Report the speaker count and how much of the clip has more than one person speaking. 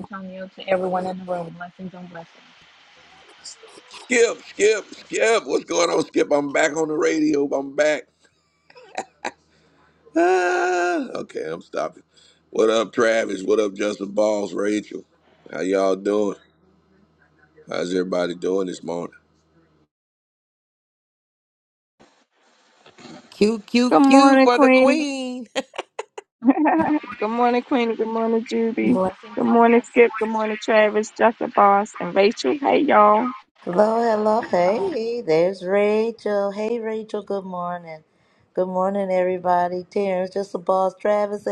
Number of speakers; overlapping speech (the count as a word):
five, about 3%